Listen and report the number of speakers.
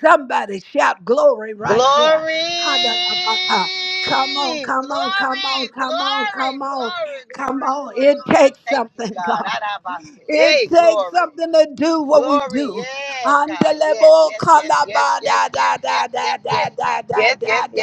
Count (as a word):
two